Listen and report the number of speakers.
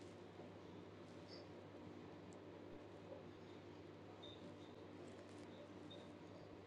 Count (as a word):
zero